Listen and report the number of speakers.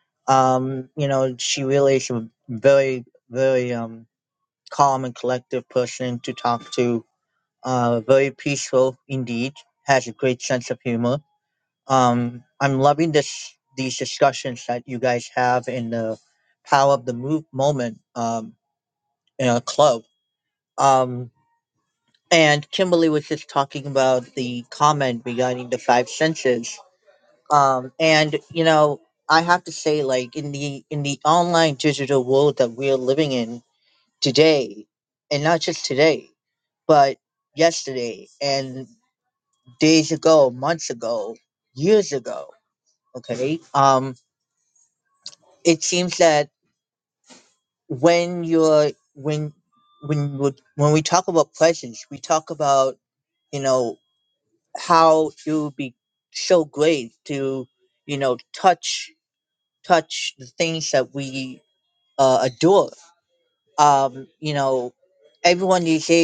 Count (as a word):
one